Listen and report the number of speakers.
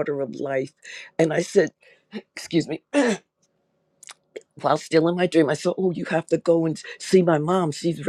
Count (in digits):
1